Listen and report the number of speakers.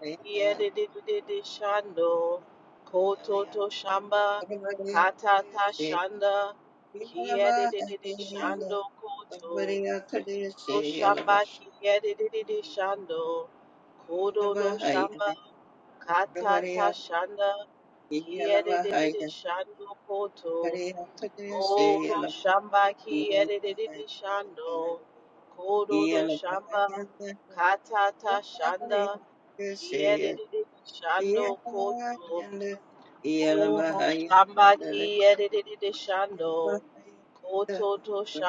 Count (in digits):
2